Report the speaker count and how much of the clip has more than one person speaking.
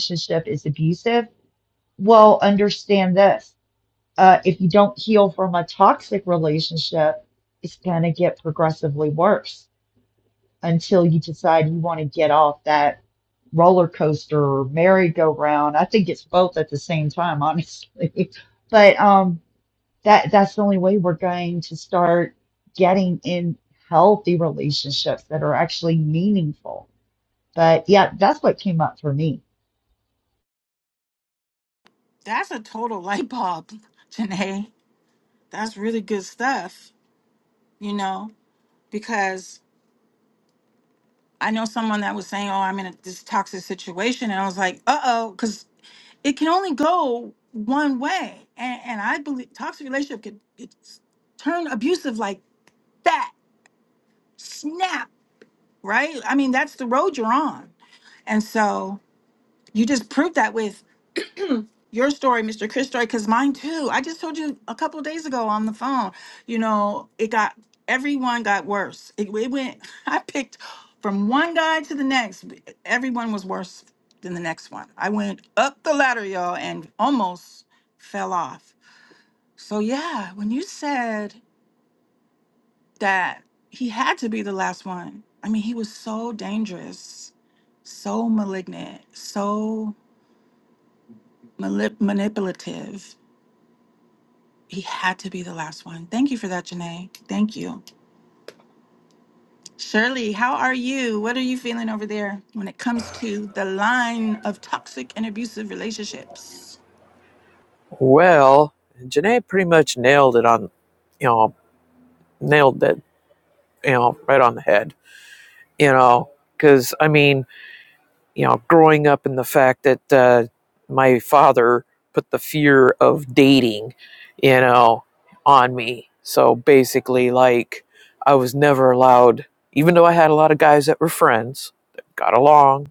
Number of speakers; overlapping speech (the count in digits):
3, no overlap